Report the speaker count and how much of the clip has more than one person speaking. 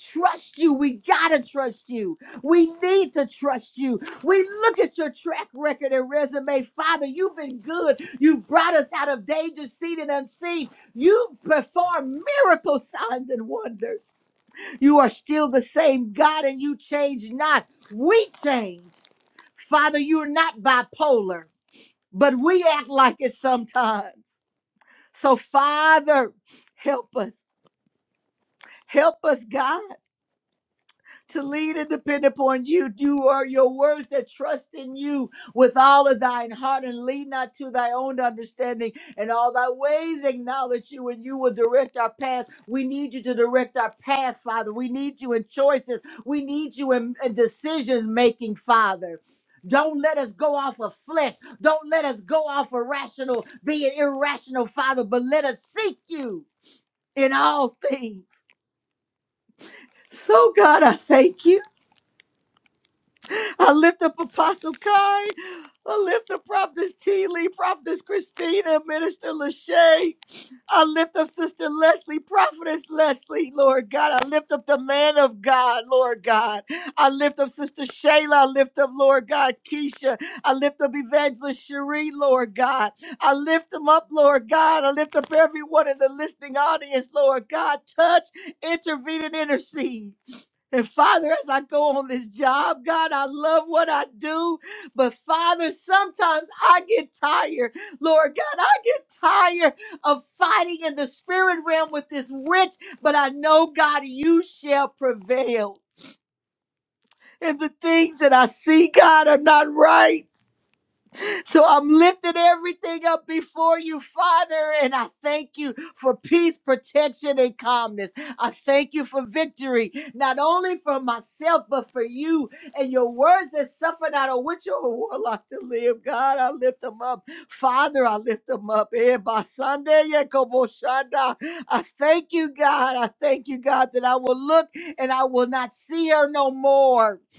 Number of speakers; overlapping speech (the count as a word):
one, no overlap